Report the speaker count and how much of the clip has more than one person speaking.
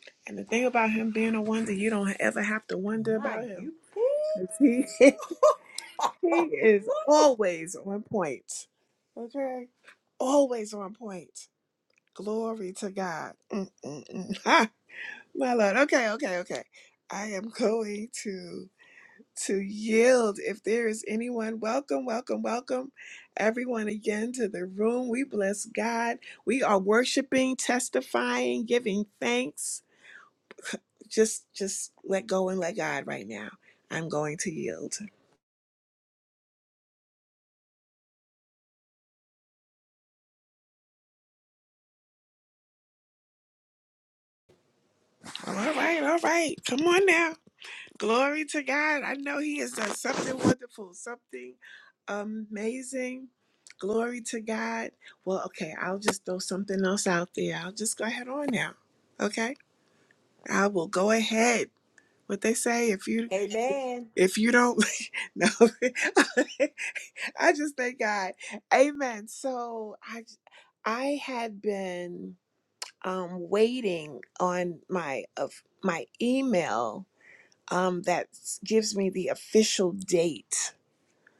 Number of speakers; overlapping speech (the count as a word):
two, about 1%